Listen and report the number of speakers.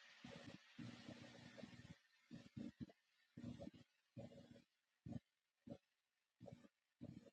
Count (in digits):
0